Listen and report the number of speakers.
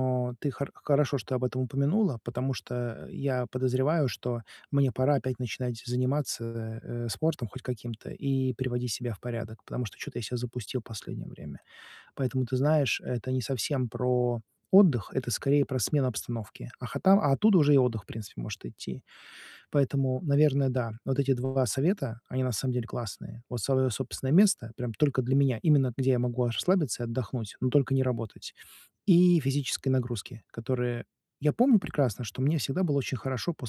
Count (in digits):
1